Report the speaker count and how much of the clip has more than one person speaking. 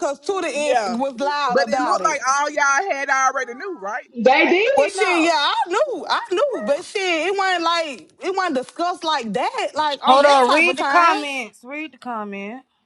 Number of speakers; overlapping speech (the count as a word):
four, about 24%